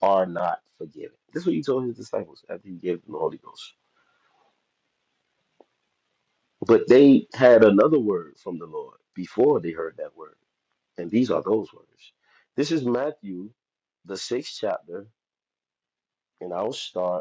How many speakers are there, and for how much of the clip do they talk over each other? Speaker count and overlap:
1, no overlap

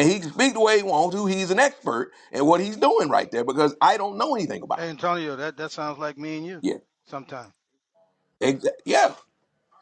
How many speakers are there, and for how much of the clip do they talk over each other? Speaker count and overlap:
2, about 1%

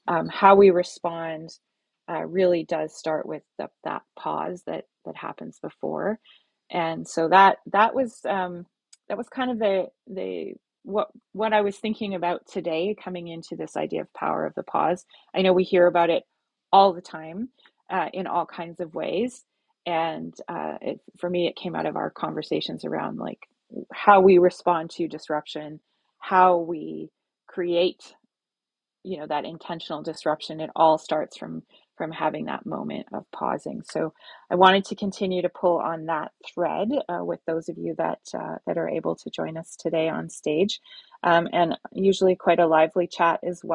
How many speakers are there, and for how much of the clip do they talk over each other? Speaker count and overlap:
1, no overlap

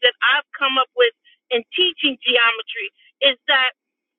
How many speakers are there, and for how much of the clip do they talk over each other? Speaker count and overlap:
1, no overlap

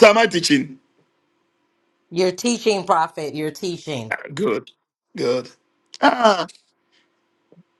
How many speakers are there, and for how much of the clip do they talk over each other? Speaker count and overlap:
2, no overlap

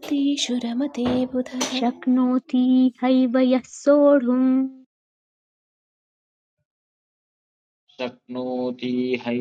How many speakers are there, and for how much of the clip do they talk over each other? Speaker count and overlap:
3, no overlap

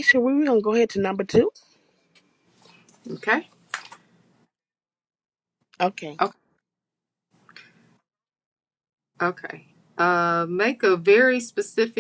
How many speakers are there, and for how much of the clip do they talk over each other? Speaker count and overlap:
2, no overlap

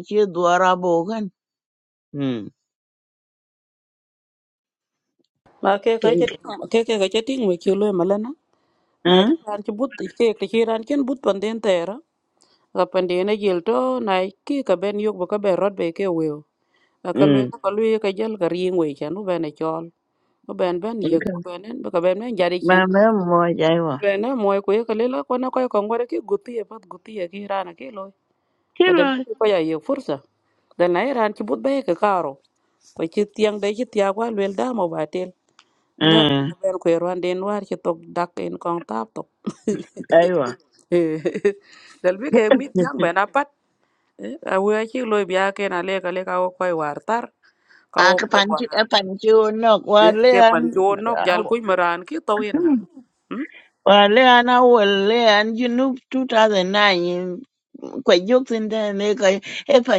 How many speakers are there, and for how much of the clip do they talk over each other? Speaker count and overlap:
2, about 7%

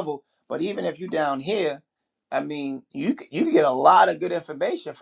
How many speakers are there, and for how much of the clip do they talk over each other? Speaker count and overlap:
1, no overlap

